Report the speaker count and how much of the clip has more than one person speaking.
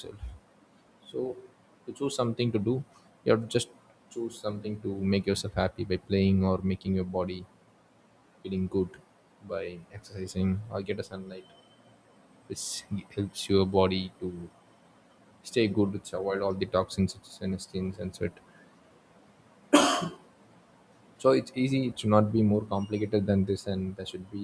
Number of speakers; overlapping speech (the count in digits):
1, no overlap